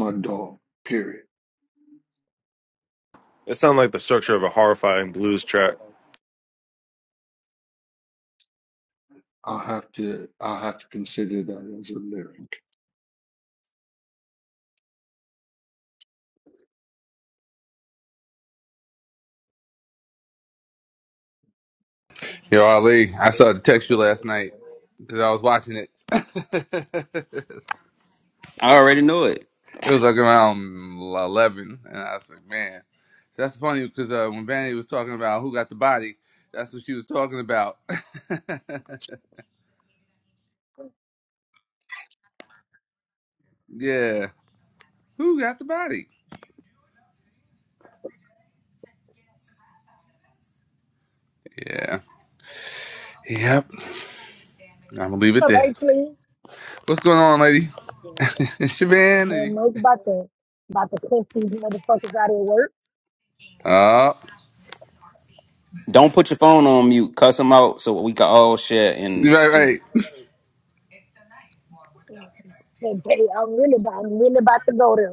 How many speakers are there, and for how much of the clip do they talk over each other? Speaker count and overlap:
5, about 1%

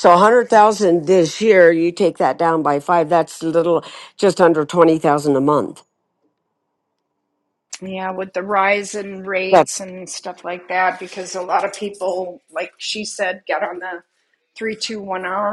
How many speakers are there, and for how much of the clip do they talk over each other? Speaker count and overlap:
2, about 1%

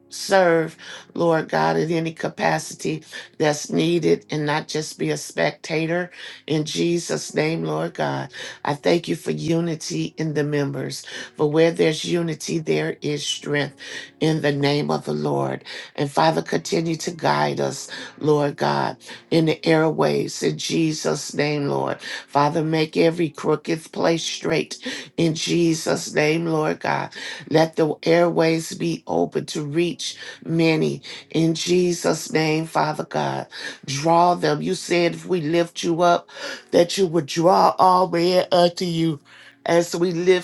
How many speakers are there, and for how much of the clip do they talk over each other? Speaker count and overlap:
1, no overlap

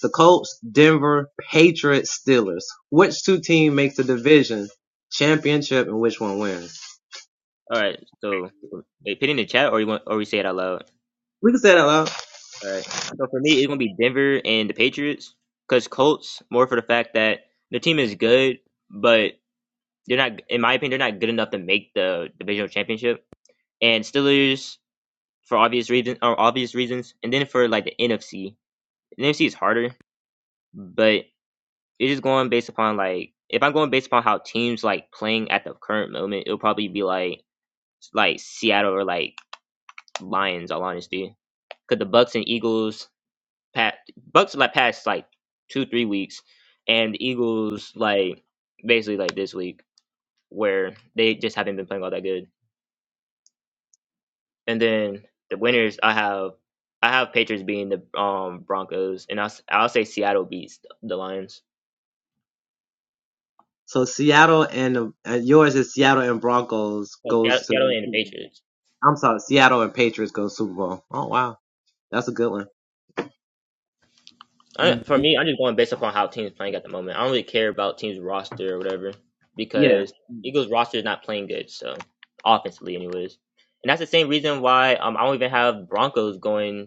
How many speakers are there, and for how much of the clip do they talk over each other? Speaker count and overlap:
2, about 1%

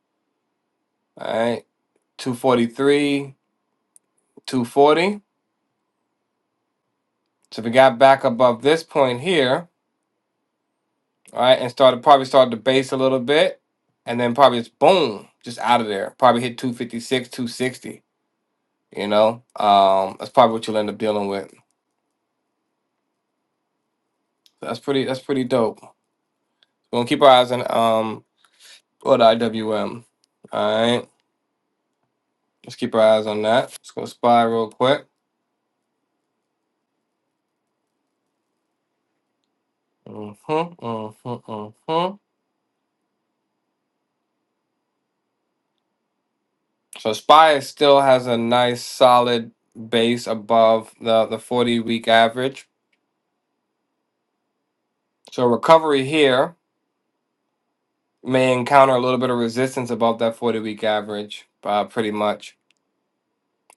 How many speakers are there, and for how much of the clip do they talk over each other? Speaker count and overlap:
1, no overlap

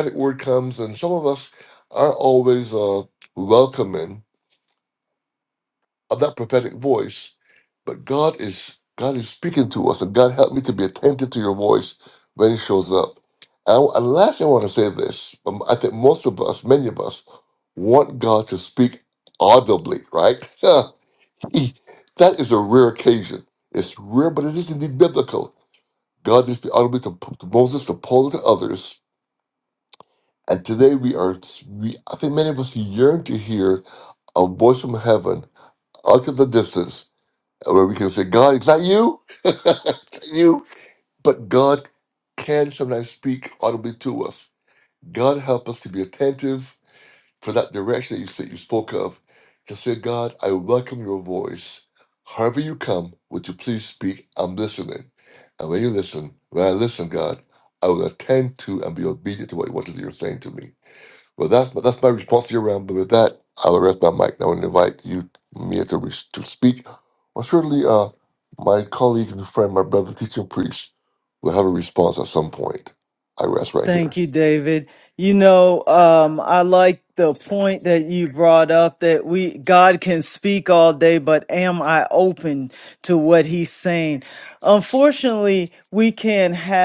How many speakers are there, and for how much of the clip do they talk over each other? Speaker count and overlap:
2, under 1%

